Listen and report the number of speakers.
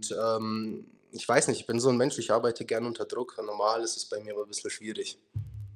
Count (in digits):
1